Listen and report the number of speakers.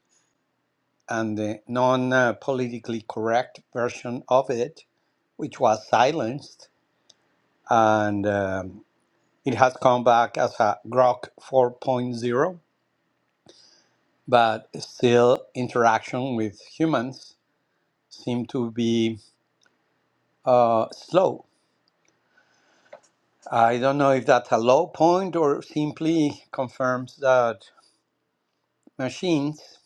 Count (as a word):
one